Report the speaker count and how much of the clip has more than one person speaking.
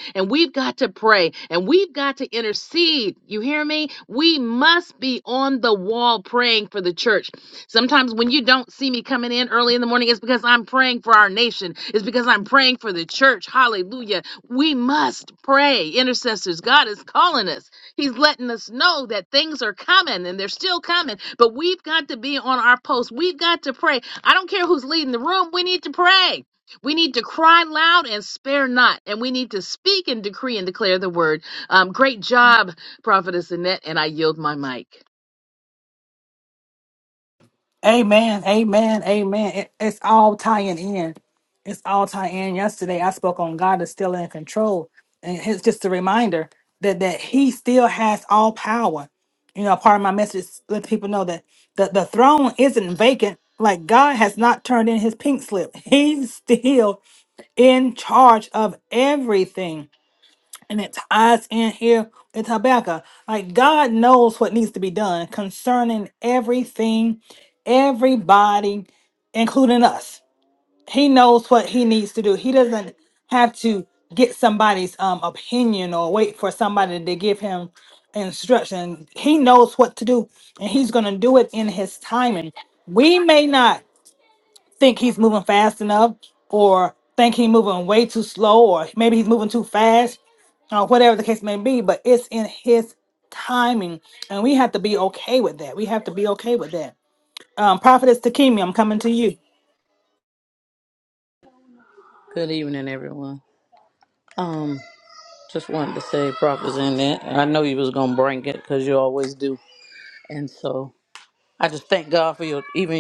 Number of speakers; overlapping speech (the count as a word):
three, no overlap